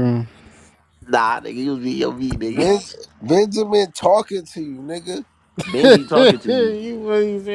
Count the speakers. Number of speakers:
three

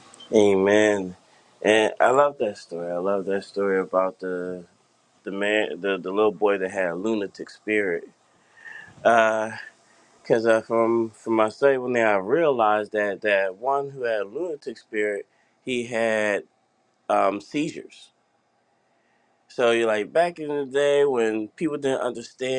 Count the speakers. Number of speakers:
one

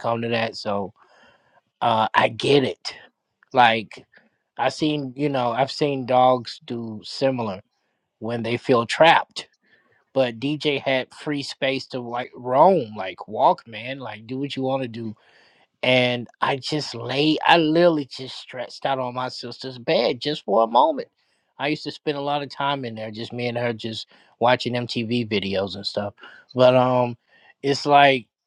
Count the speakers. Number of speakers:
one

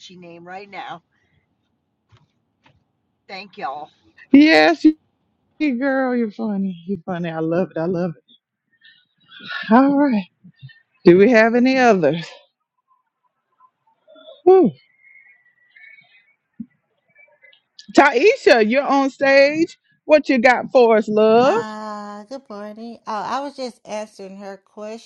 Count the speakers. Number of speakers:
three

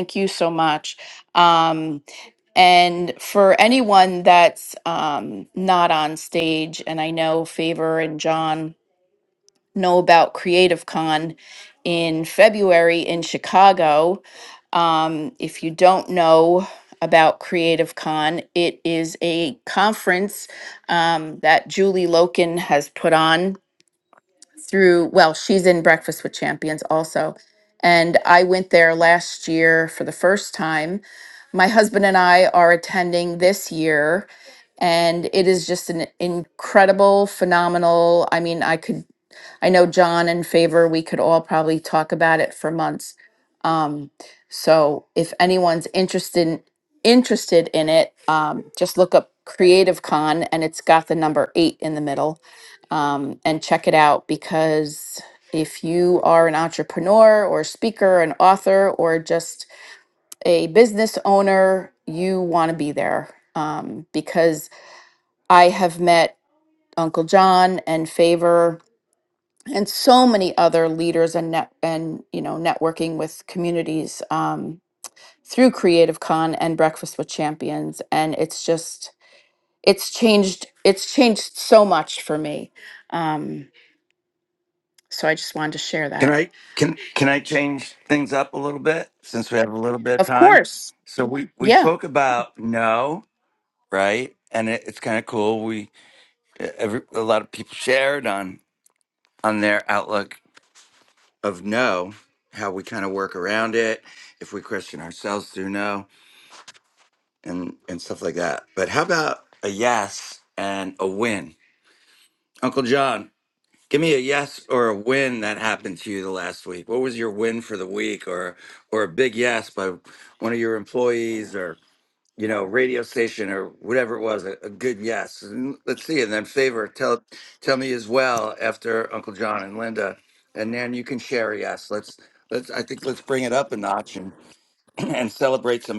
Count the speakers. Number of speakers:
two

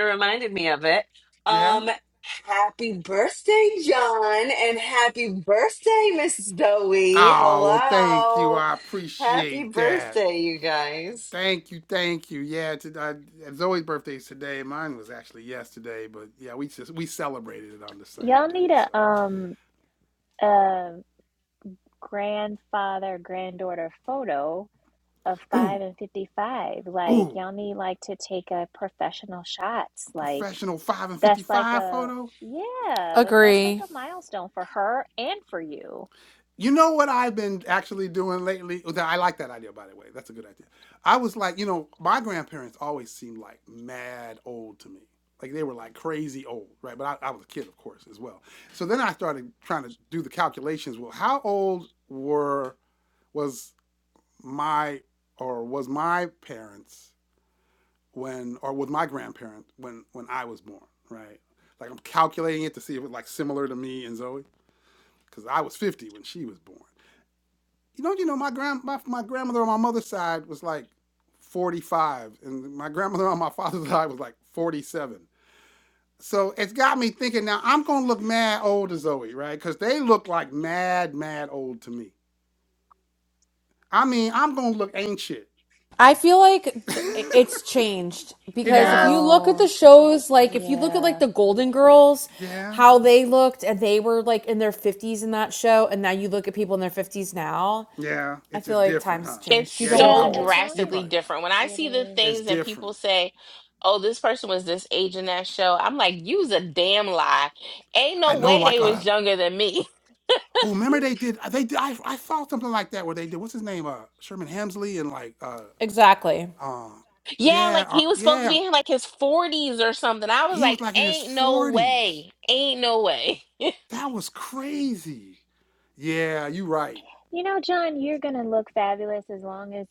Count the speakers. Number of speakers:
five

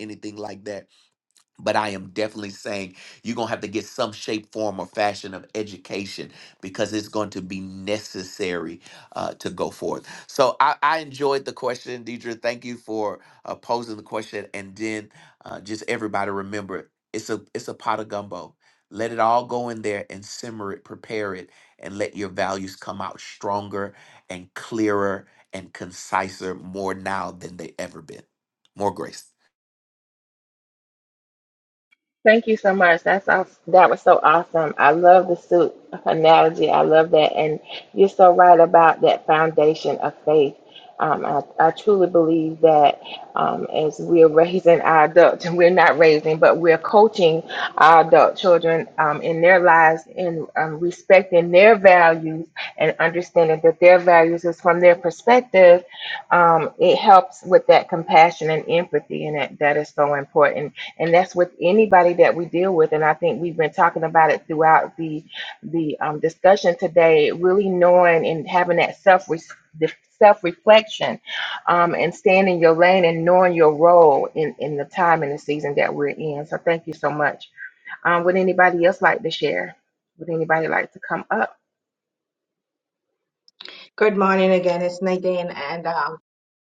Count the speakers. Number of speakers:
three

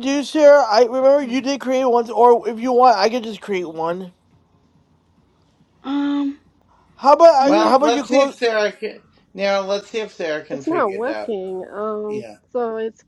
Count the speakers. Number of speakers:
four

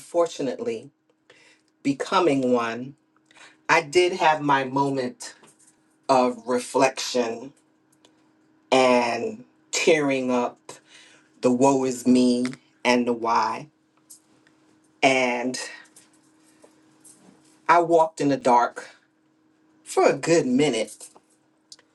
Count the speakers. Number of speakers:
one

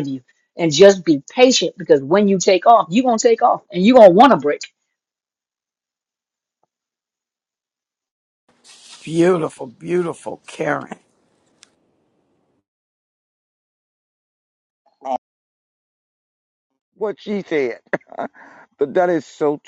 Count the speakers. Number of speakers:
three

